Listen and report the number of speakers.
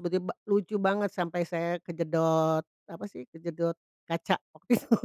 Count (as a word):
one